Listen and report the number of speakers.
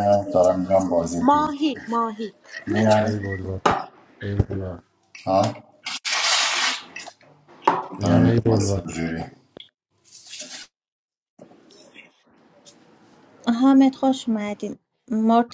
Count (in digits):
4